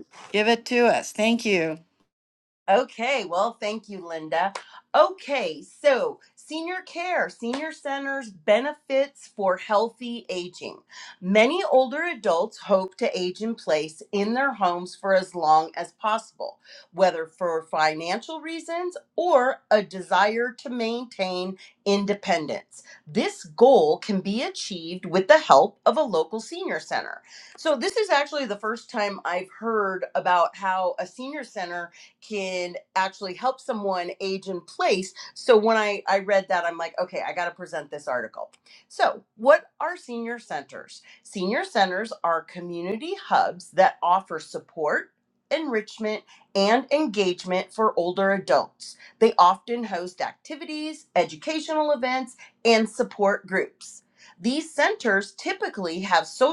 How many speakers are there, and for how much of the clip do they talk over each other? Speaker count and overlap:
2, no overlap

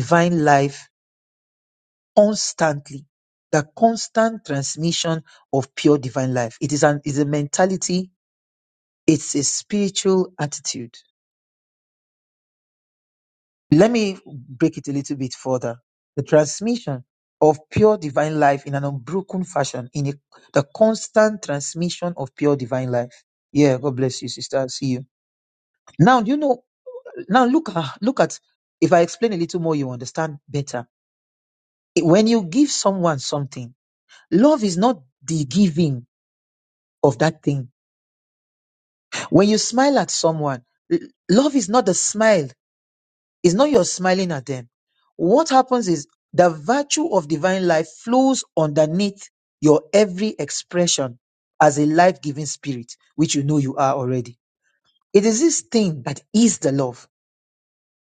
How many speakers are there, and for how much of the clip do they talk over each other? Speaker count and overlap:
1, no overlap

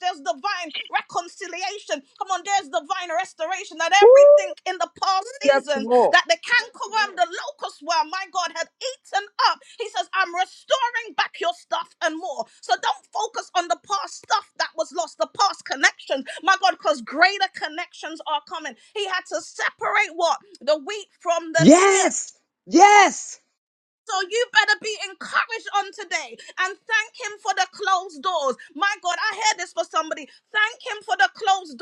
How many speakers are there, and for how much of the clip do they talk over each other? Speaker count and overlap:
2, about 4%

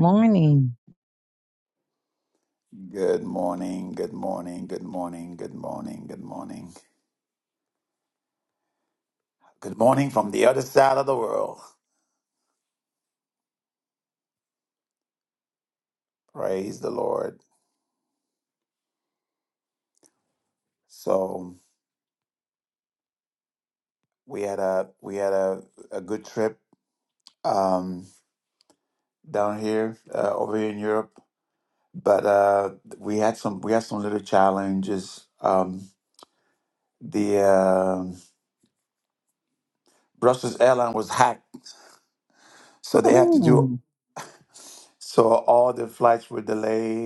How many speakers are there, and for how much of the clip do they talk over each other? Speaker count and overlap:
2, about 1%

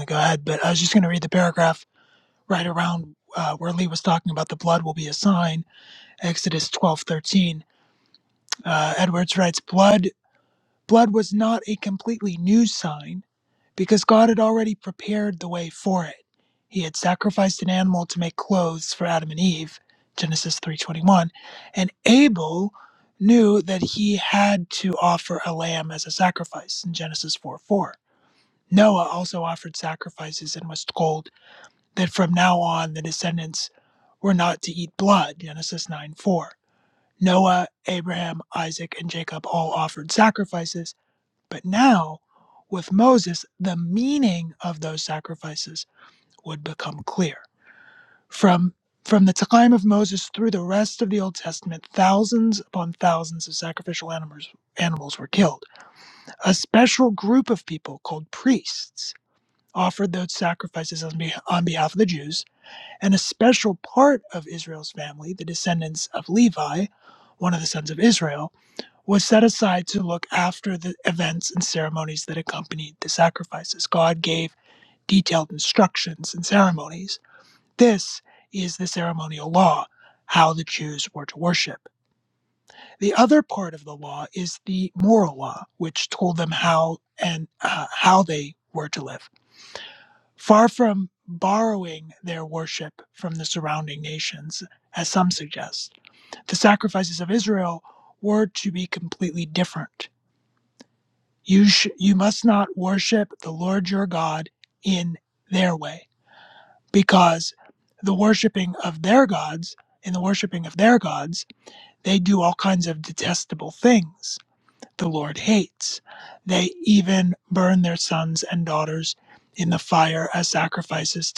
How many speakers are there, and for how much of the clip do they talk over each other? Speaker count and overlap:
1, no overlap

